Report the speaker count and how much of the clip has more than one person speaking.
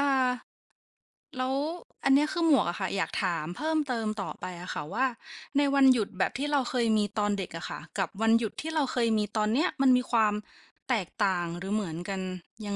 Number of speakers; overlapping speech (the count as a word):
one, no overlap